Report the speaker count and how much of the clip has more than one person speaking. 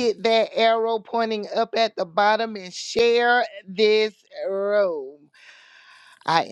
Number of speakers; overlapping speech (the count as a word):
one, no overlap